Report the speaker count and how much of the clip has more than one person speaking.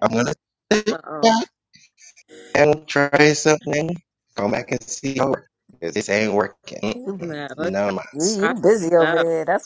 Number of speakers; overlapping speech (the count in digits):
3, about 9%